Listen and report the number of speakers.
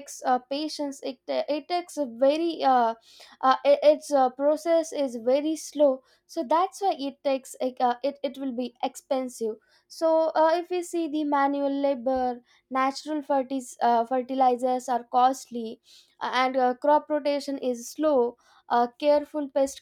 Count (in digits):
1